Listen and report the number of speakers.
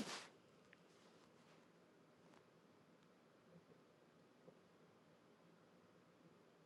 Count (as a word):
zero